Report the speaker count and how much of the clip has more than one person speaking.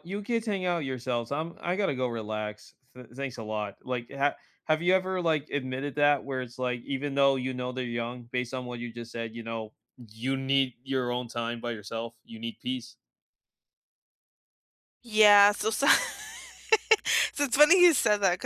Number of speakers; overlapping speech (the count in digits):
2, no overlap